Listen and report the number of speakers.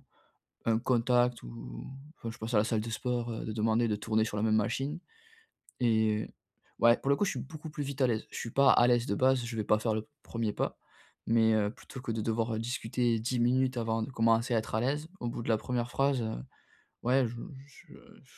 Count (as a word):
one